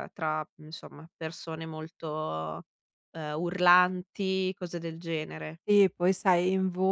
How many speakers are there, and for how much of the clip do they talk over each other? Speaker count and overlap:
two, no overlap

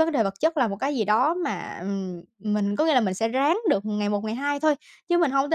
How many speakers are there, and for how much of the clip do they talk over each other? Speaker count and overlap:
one, no overlap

